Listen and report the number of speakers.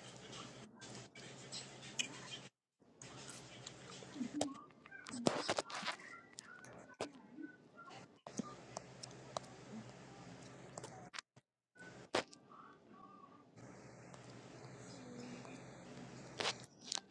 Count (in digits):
0